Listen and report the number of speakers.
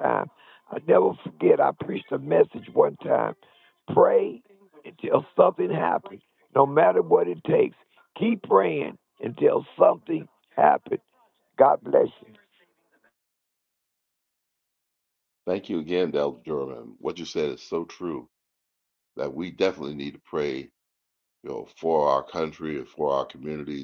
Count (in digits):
2